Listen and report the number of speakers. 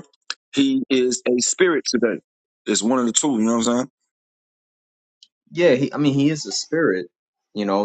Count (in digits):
2